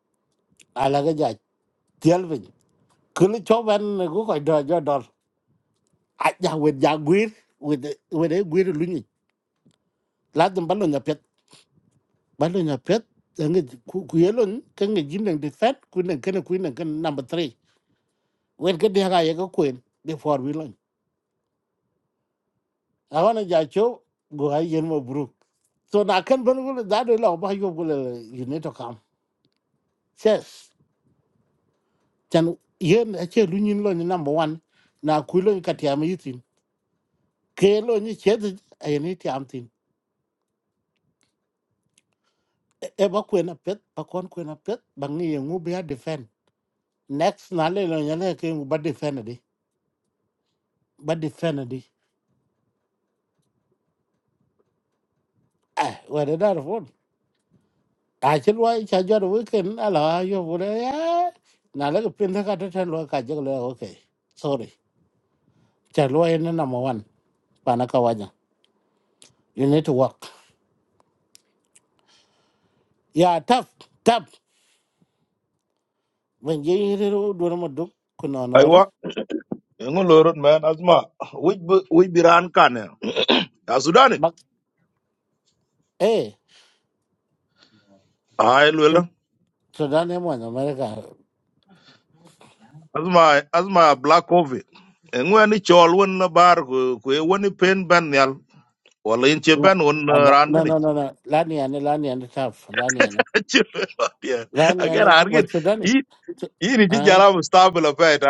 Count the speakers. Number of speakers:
2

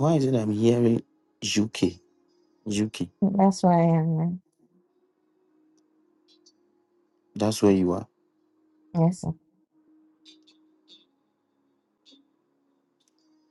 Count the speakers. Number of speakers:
2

